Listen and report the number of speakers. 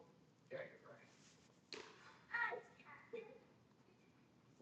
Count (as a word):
zero